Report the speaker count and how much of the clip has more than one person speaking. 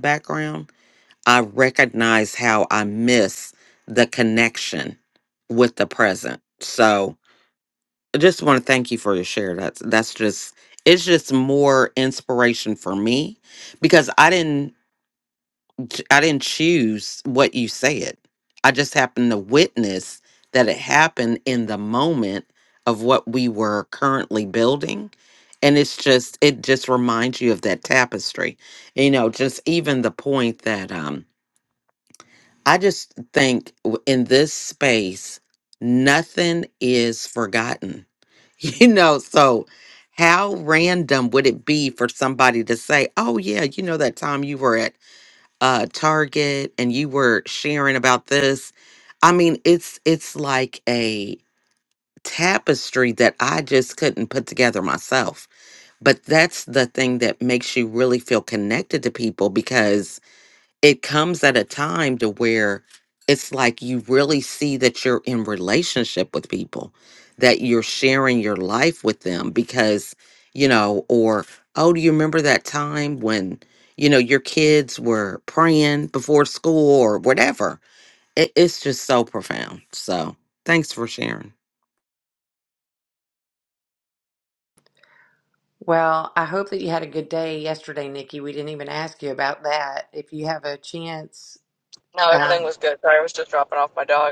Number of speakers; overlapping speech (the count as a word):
three, under 1%